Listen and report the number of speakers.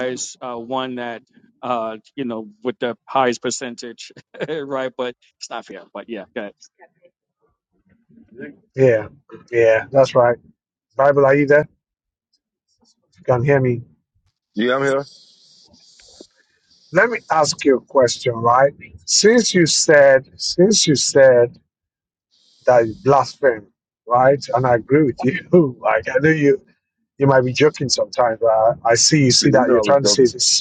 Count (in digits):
3